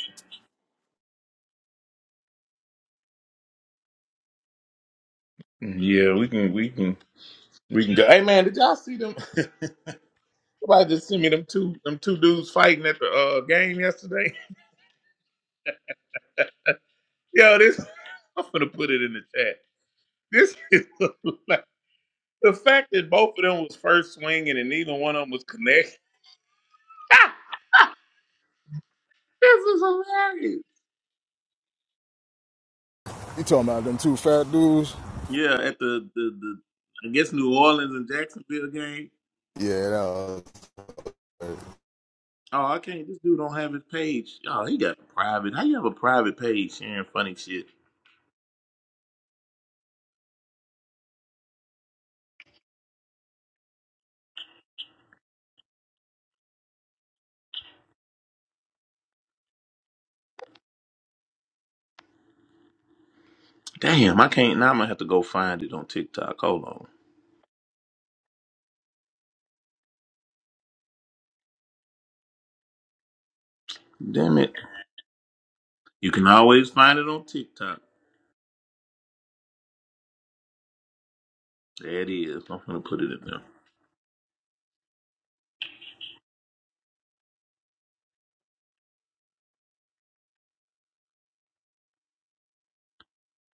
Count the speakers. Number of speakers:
2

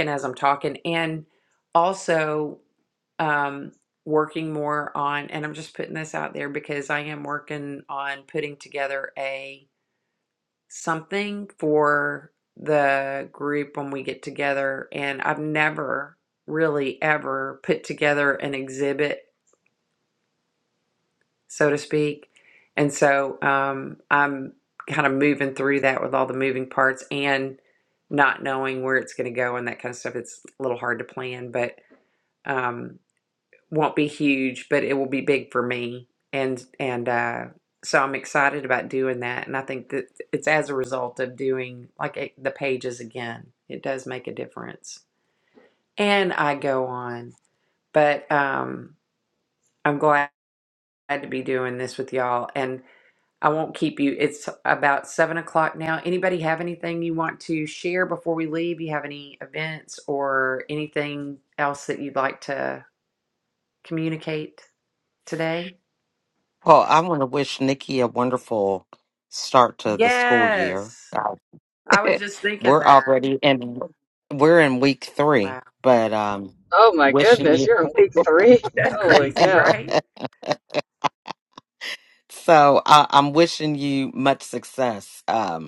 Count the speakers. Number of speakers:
3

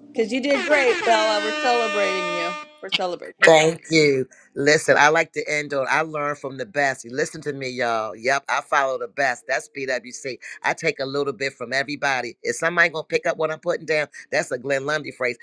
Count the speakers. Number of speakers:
2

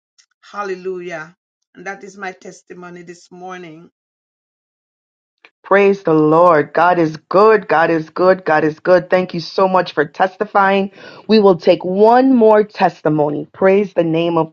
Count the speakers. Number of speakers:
2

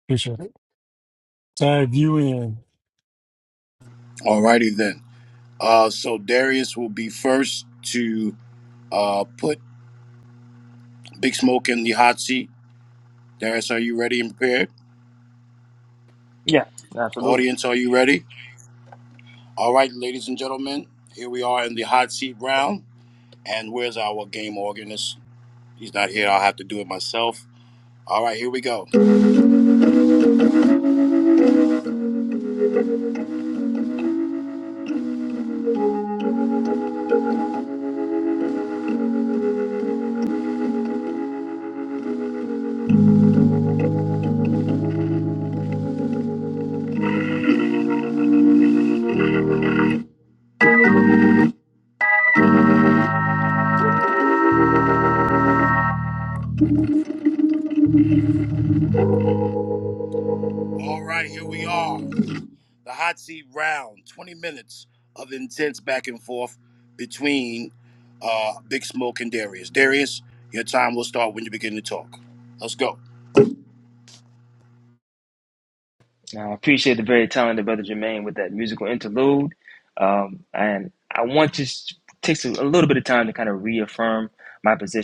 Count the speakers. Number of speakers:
3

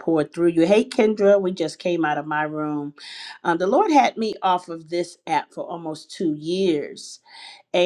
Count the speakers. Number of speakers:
1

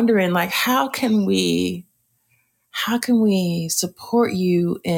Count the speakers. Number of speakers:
1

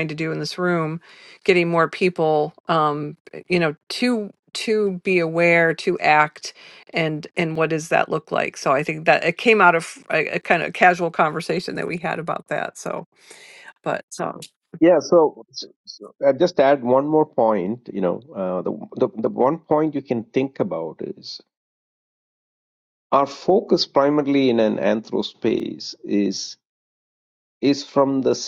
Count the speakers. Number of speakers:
2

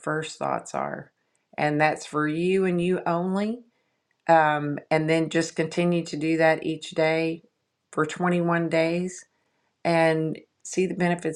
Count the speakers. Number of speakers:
1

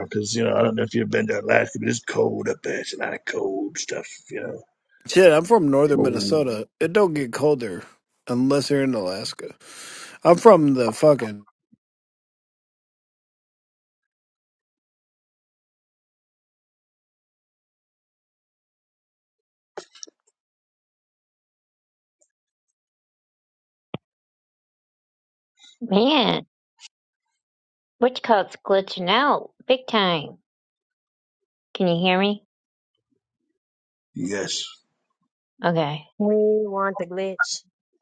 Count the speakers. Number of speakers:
4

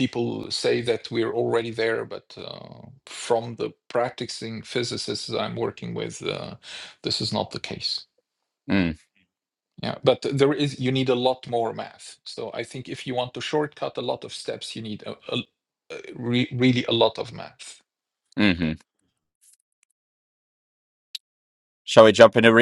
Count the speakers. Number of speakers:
2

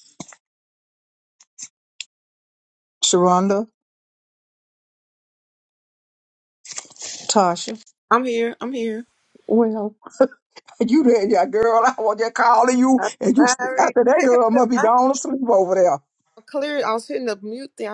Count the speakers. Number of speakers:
2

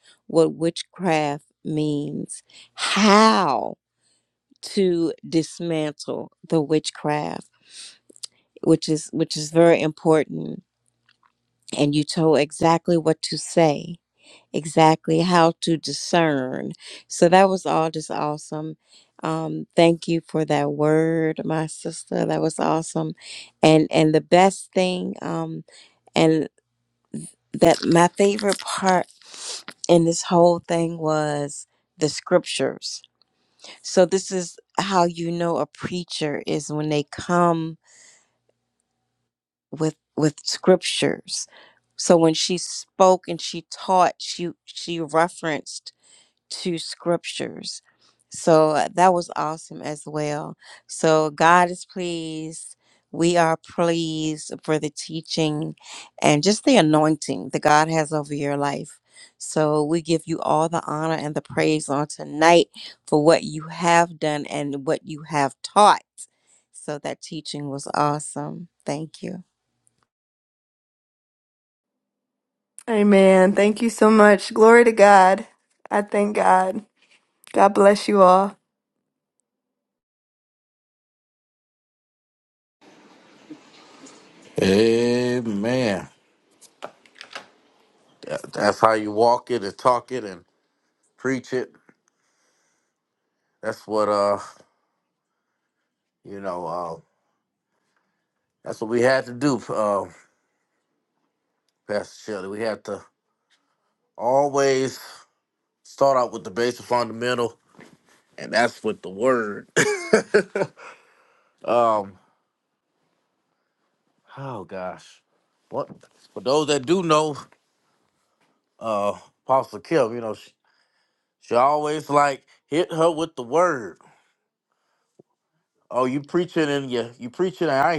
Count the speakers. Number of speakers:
3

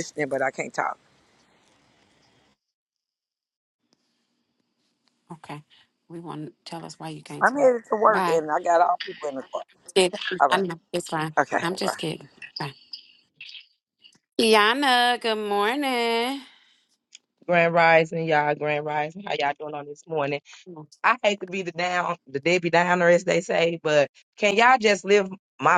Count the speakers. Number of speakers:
3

